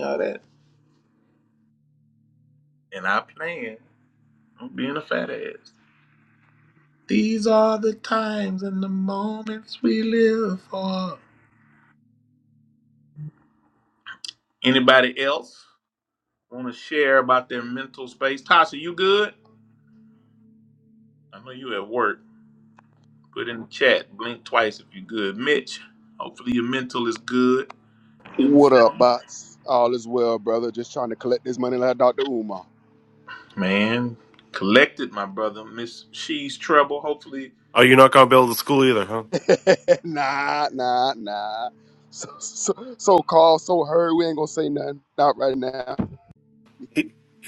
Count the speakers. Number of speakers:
three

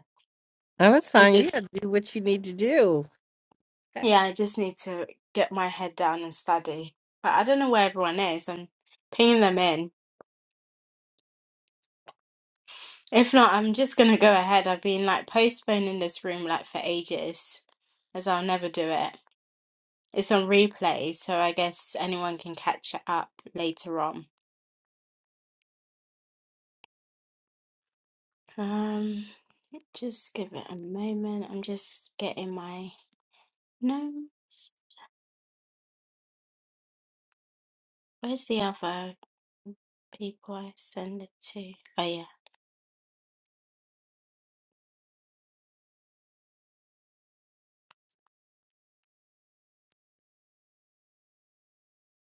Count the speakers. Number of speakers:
two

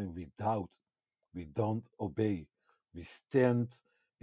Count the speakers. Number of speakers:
one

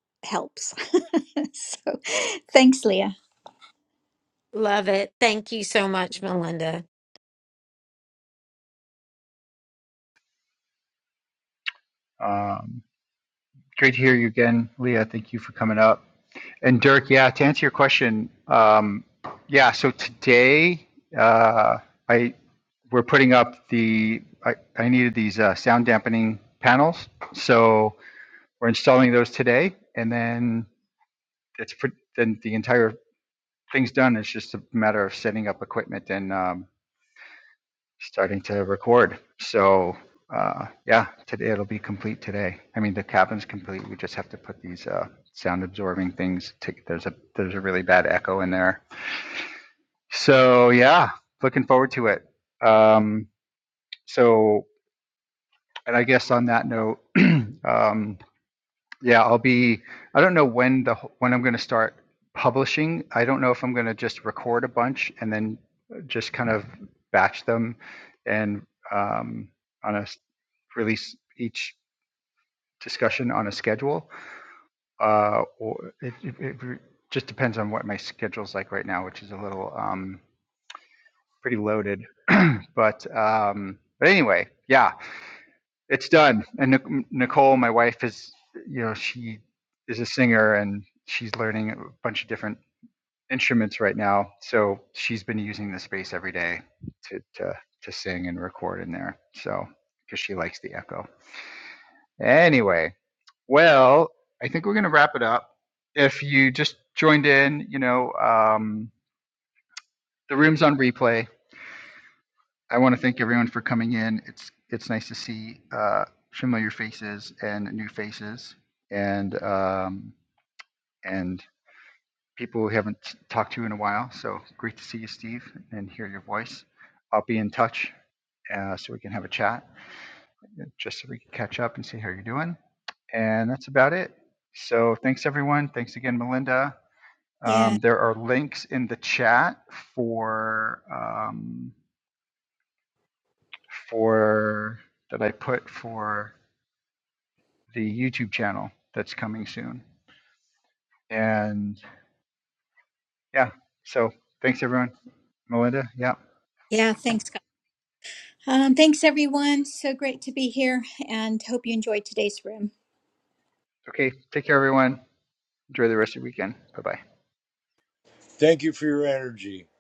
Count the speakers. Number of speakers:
four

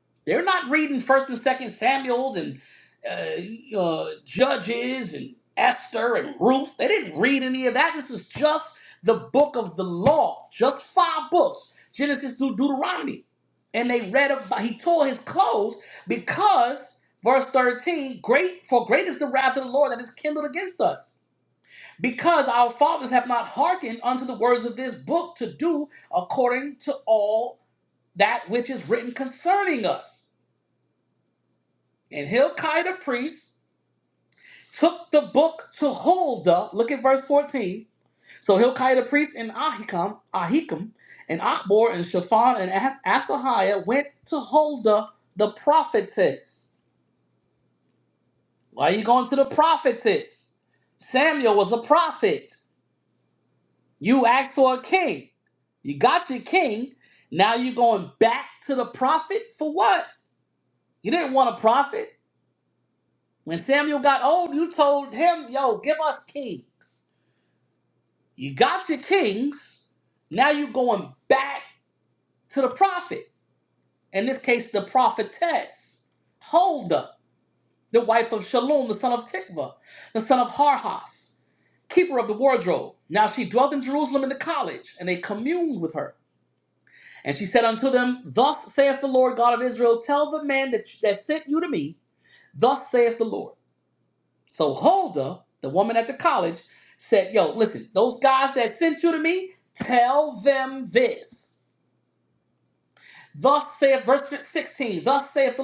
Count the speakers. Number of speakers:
one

